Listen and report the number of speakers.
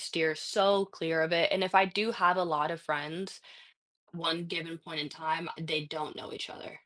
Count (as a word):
one